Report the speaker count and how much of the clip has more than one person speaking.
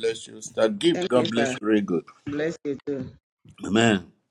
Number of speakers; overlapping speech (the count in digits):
2, about 15%